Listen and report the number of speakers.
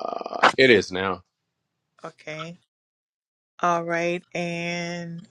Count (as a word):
two